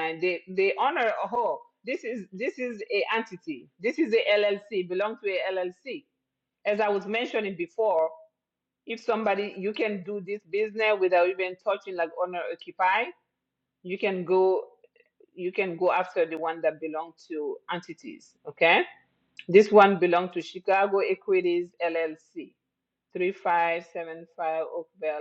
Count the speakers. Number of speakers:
1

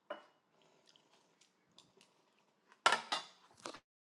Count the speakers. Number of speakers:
0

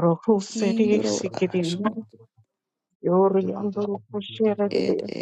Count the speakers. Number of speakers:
2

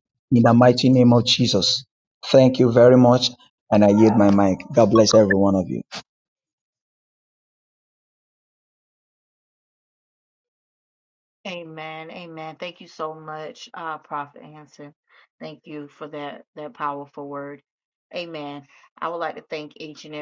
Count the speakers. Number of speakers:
2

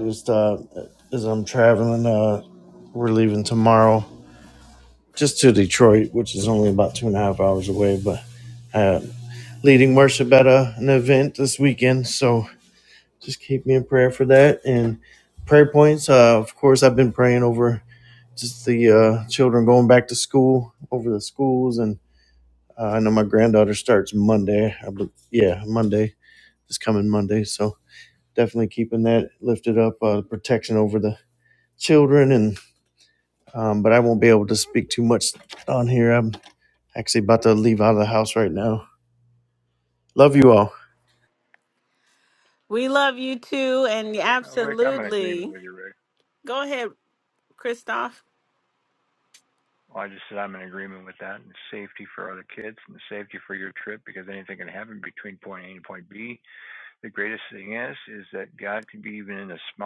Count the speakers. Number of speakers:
3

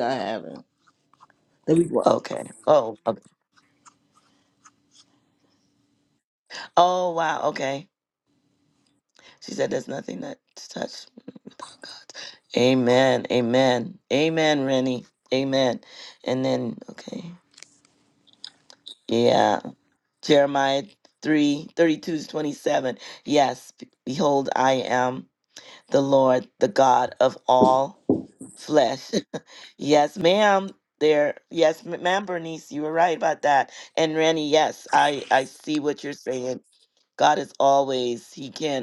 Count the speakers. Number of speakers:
2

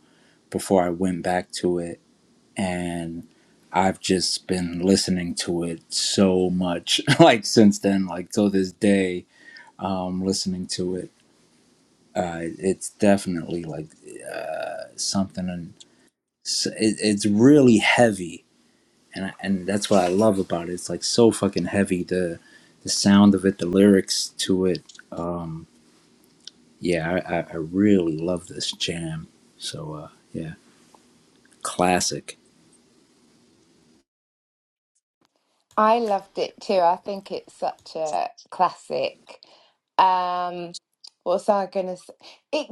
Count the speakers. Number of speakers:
2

